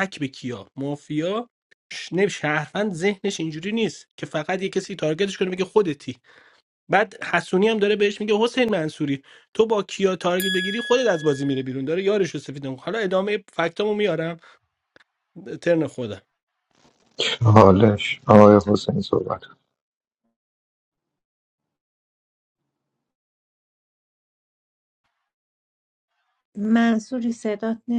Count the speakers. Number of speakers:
3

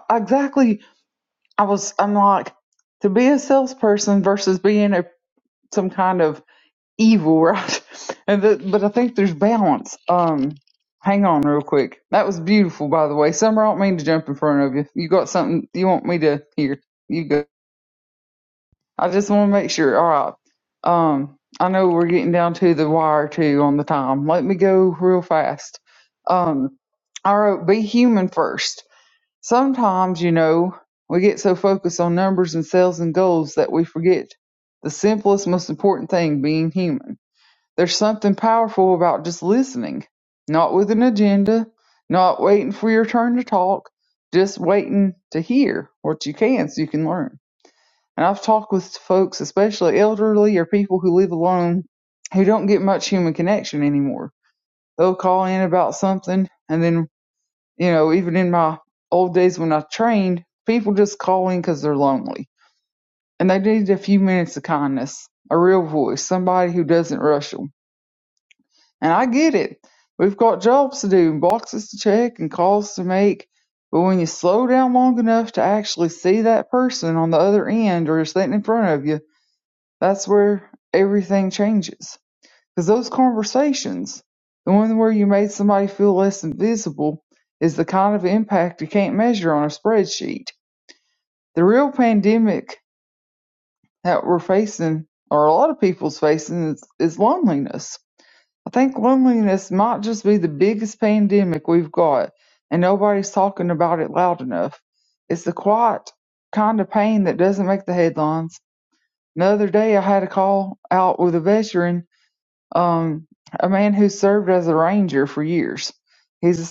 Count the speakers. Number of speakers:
1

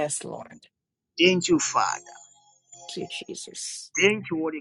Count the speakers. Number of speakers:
2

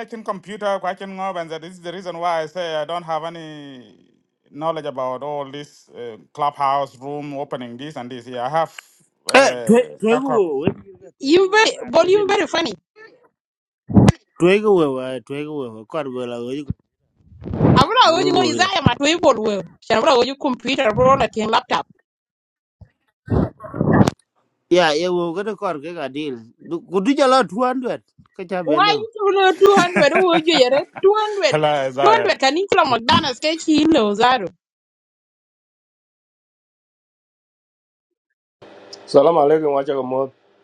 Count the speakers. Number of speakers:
4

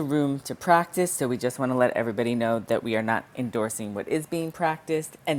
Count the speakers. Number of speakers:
1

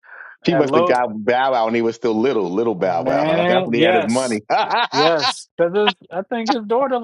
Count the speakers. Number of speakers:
2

